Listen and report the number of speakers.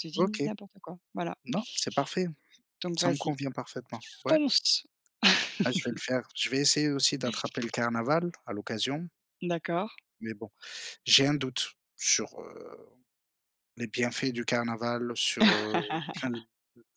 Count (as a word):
two